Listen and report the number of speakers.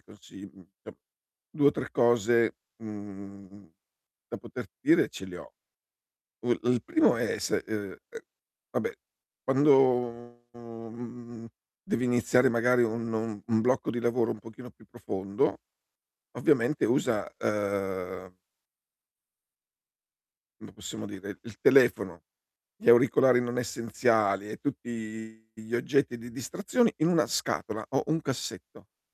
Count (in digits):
1